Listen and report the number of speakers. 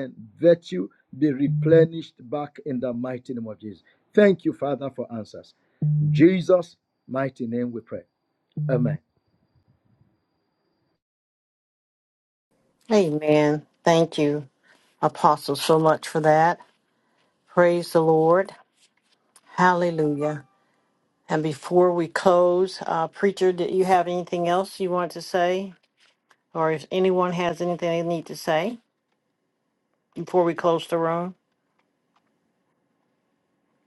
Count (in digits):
2